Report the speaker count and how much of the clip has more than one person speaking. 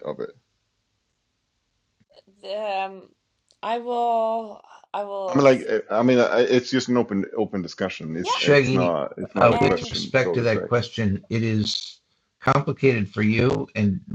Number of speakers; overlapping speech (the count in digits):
3, about 15%